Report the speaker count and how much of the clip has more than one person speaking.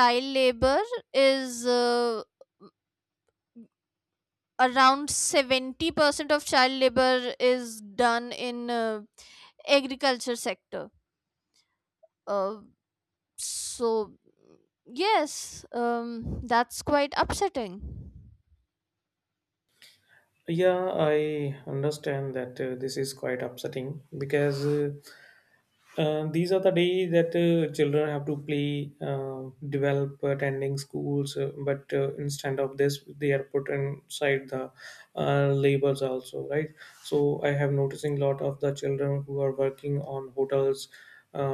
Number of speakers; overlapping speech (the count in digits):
2, no overlap